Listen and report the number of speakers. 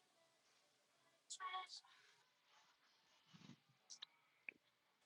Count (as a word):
zero